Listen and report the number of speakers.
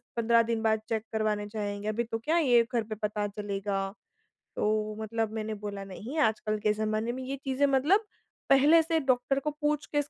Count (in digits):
1